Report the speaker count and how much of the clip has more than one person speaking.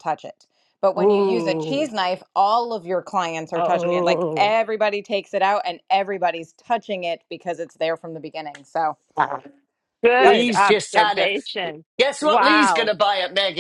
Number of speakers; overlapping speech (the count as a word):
three, about 27%